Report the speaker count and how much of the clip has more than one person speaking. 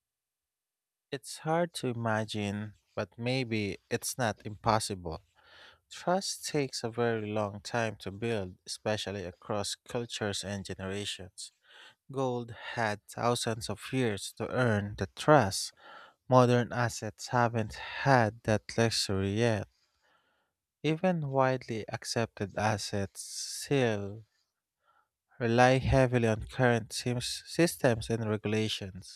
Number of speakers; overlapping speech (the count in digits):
1, no overlap